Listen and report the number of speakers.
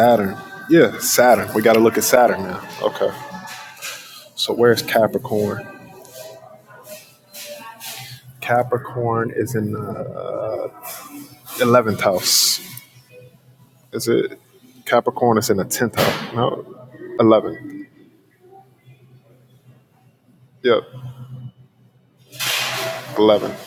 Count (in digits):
1